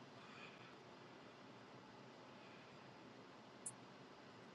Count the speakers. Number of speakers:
0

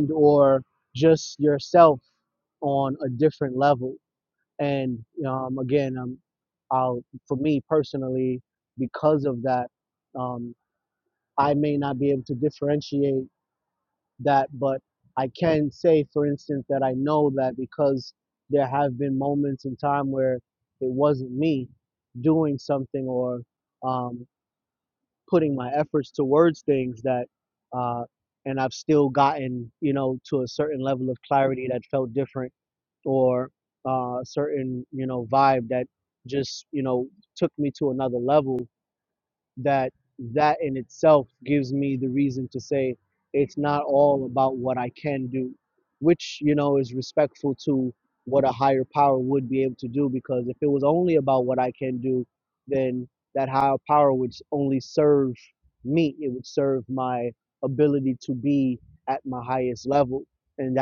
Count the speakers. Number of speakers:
1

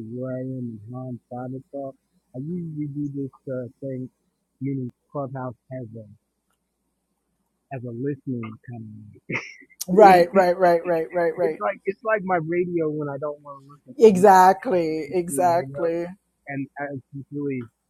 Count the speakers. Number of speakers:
2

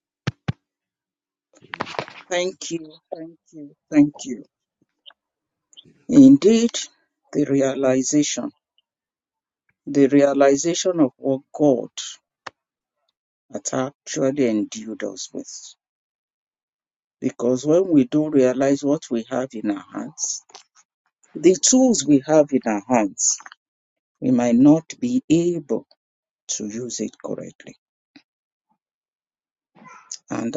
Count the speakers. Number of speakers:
1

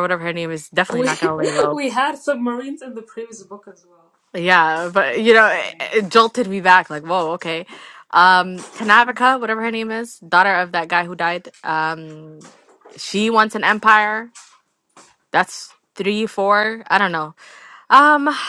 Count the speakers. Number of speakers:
2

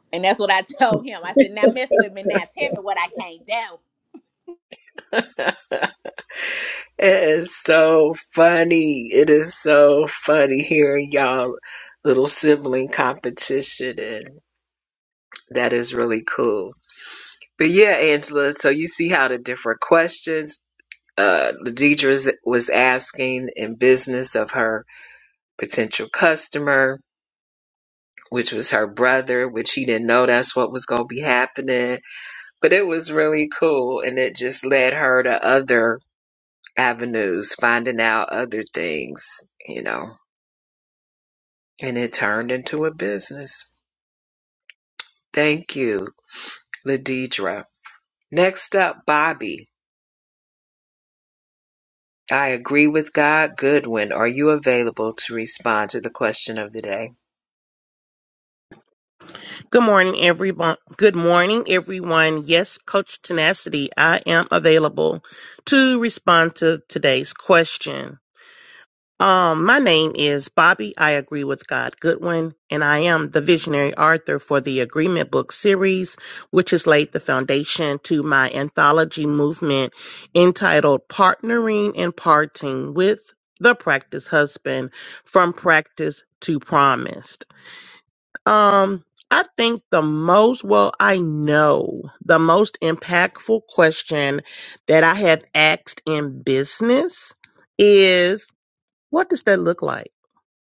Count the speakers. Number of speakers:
3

